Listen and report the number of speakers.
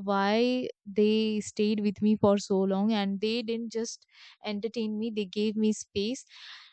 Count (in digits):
1